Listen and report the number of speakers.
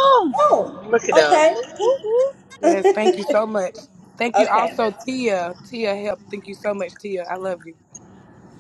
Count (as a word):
three